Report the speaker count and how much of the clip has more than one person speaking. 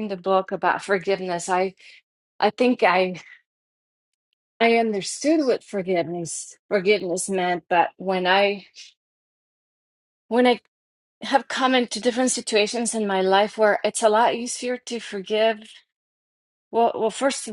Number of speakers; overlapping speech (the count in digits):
1, no overlap